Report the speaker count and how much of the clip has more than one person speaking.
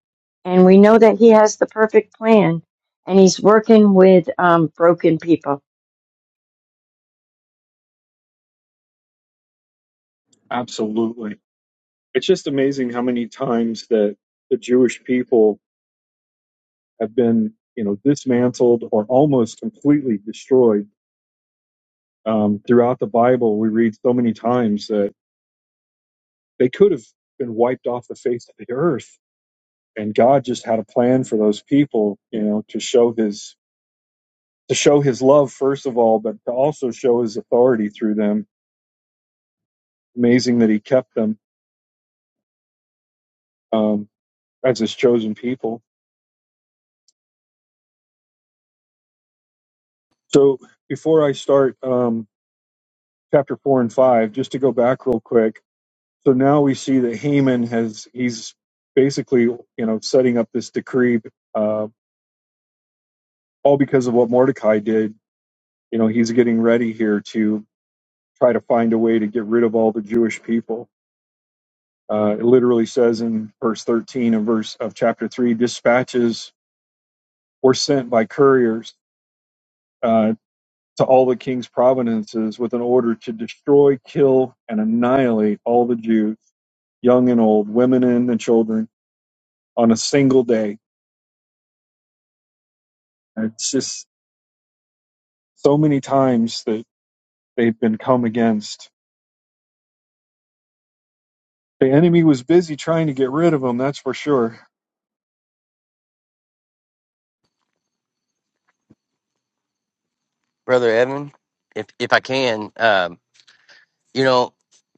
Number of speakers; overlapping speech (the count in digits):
3, no overlap